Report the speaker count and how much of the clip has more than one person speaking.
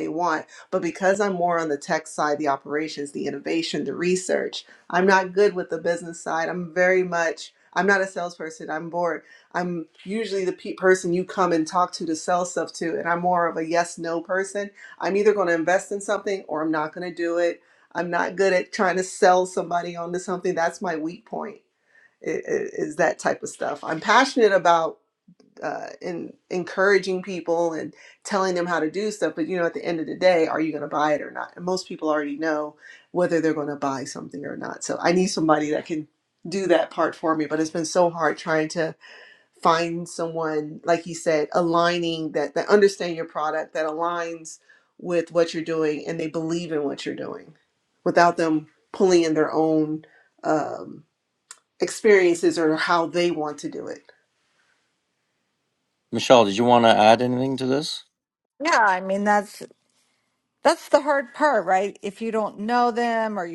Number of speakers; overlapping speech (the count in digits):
3, no overlap